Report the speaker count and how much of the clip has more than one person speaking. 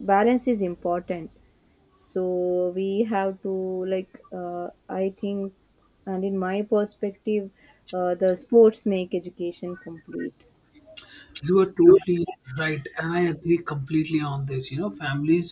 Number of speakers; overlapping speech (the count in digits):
2, no overlap